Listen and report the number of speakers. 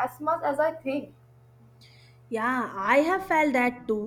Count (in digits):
2